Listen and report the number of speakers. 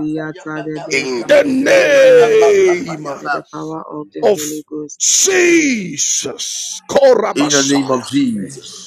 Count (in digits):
3